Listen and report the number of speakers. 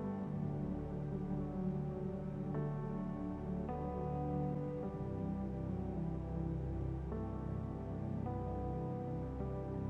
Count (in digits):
0